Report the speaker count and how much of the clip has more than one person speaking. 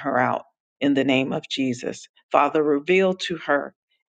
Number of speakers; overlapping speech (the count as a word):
one, no overlap